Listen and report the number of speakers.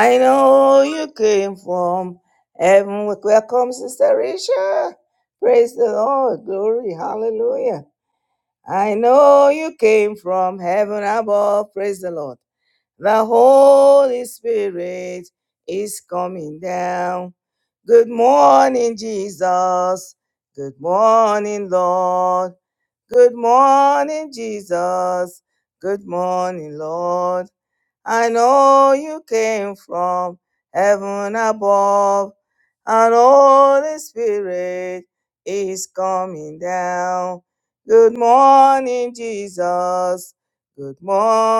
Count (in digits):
1